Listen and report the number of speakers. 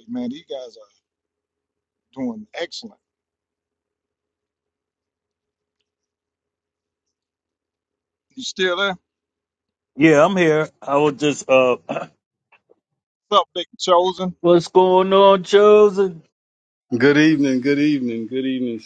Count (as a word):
three